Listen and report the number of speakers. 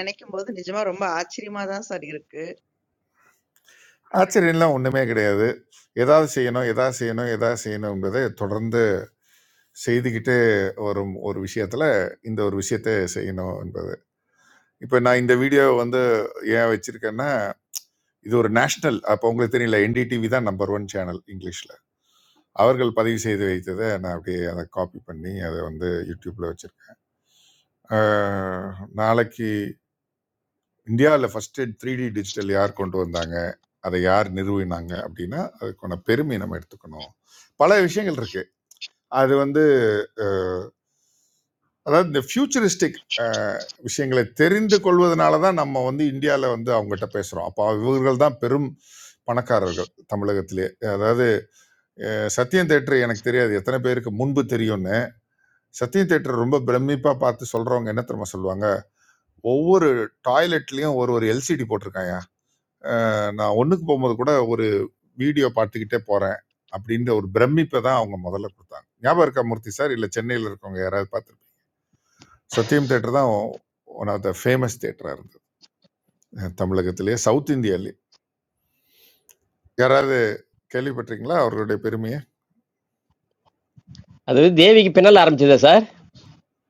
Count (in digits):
3